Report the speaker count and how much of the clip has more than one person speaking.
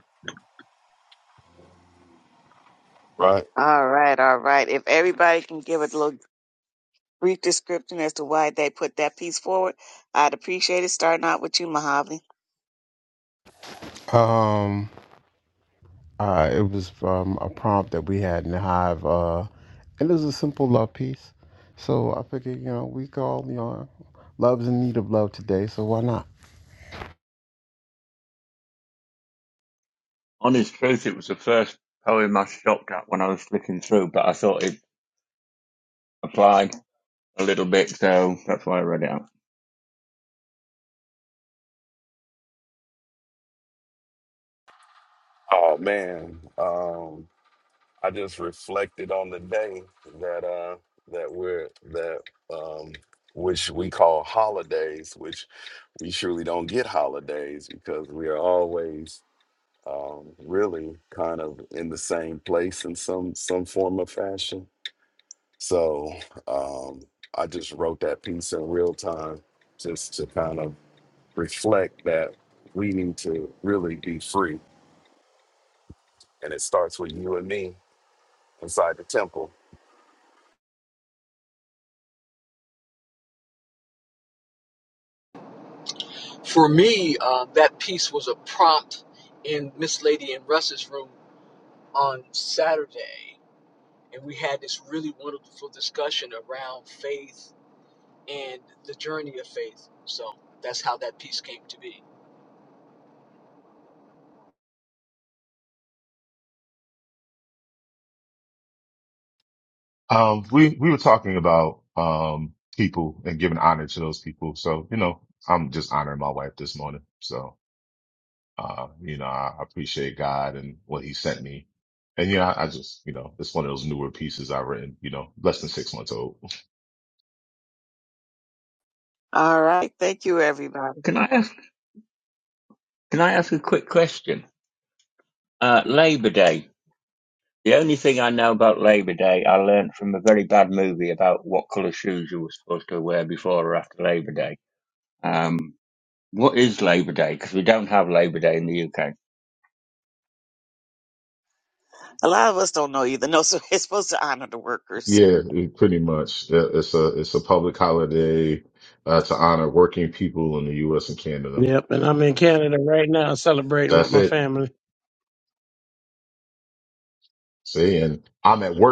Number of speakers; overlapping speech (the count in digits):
7, under 1%